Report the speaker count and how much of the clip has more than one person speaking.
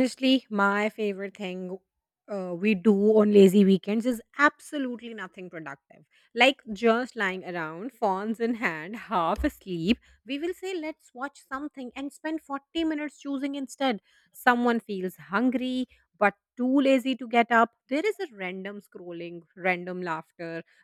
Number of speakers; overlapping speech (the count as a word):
one, no overlap